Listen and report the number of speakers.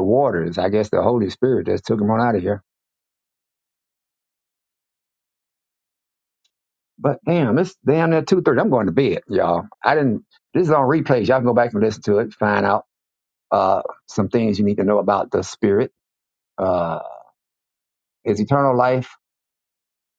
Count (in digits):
1